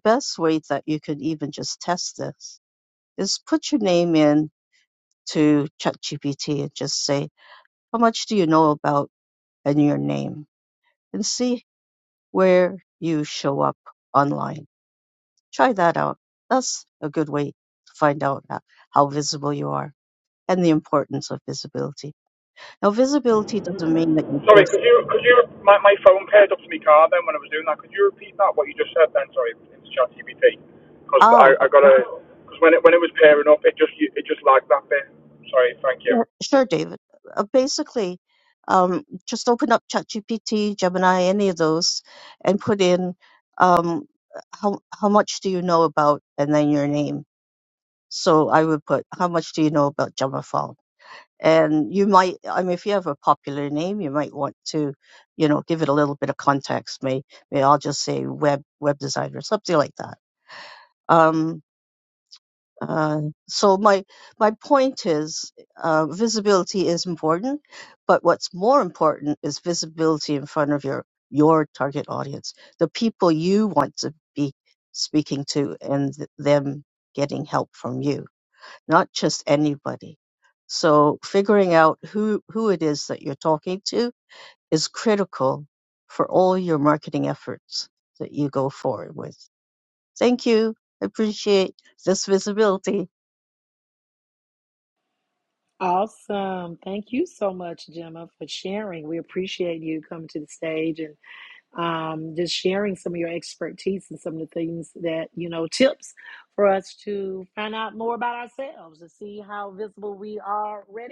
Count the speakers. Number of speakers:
3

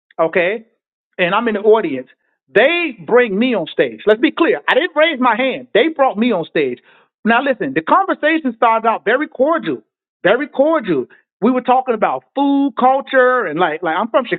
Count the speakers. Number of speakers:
1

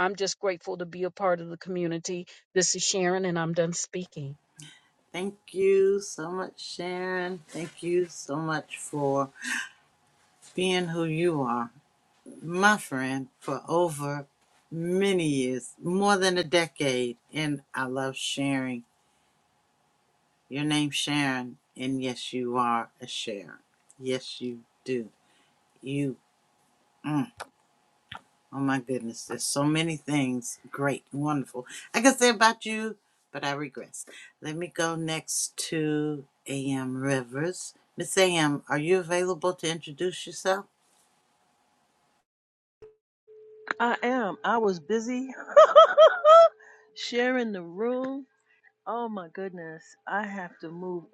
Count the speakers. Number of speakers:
3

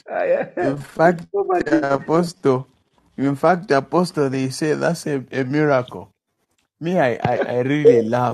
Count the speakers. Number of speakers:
2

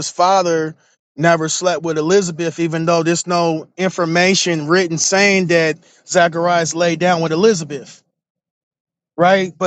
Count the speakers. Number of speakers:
1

